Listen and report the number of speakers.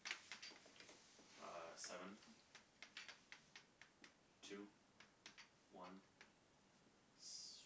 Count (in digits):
1